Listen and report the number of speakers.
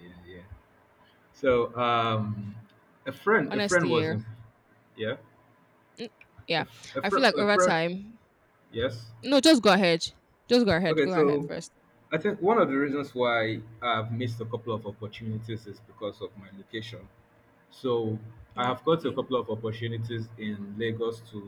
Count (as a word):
two